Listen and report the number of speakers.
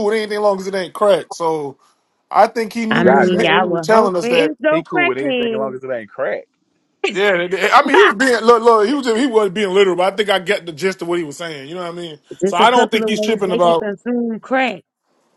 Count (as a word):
three